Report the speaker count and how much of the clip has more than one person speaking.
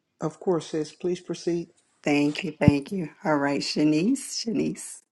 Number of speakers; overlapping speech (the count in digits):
2, no overlap